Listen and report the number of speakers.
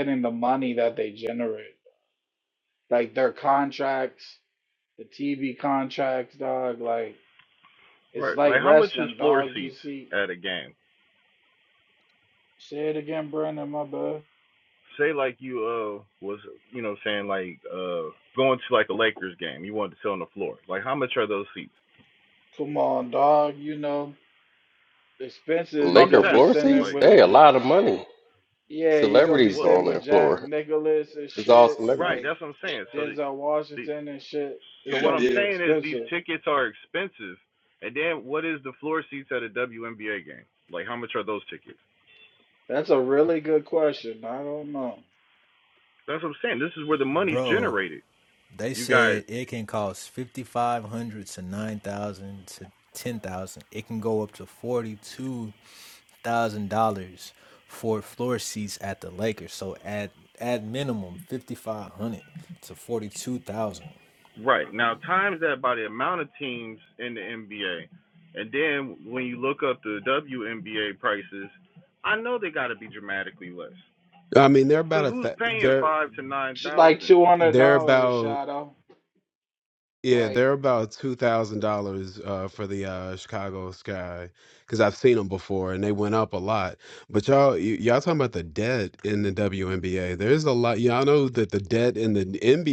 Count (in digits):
5